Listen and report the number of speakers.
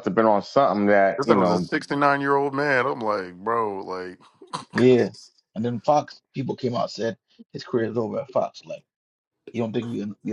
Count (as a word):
three